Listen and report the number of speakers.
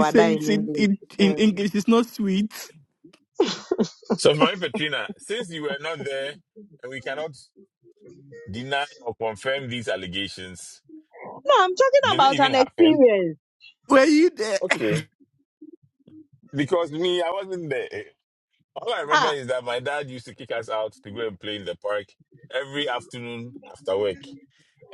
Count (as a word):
three